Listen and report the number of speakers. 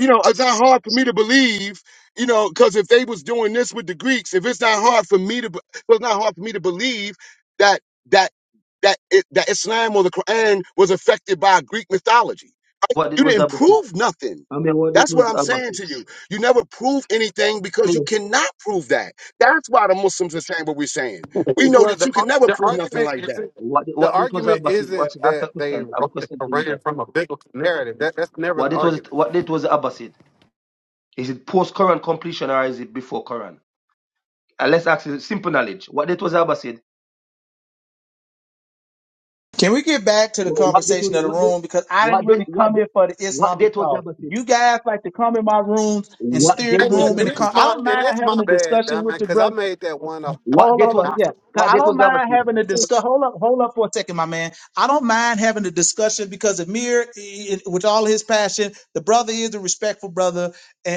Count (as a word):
four